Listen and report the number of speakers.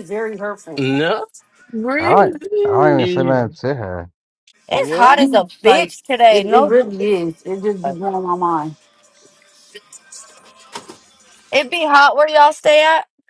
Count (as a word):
four